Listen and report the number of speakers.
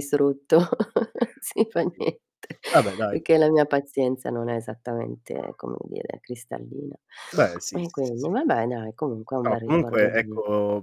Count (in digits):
2